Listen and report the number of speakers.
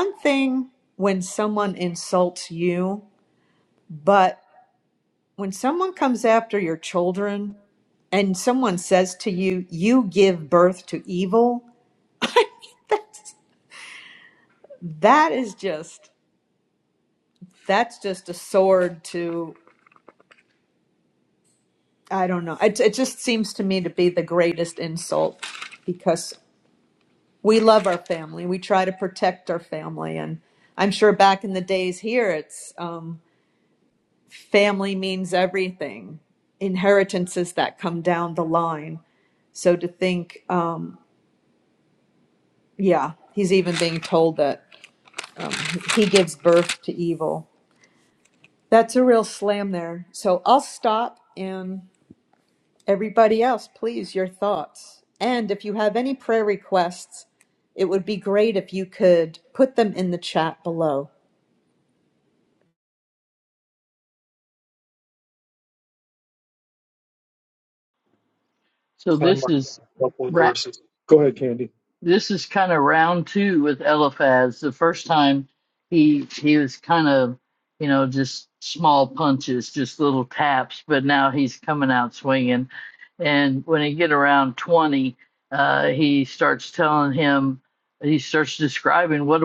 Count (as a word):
three